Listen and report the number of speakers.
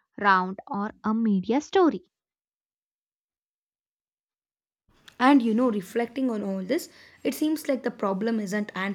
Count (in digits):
2